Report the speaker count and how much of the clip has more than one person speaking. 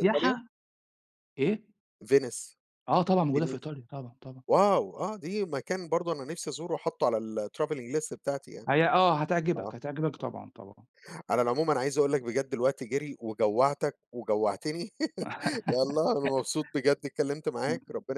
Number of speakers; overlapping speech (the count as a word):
two, about 5%